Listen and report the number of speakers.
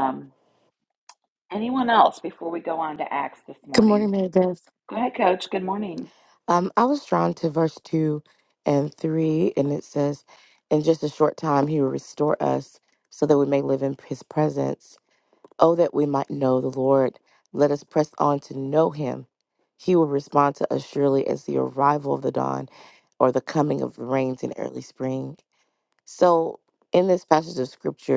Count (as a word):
two